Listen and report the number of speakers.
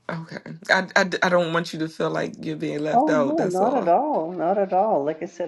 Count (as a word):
two